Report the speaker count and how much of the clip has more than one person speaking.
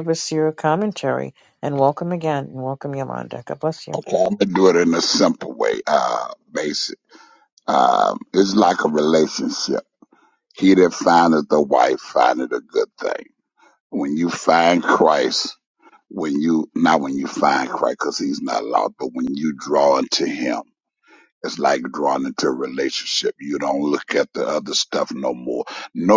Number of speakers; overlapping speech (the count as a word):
two, under 1%